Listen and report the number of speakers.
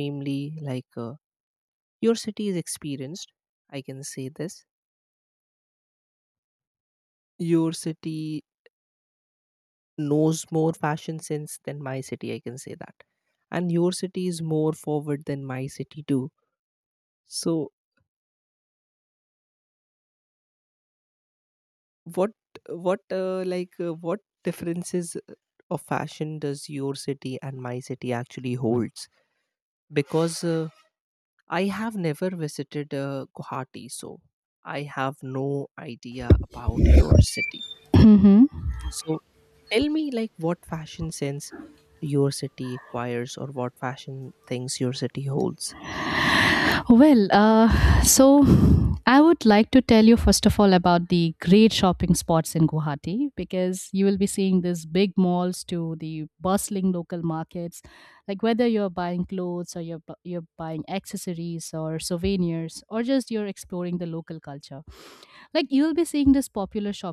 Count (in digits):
2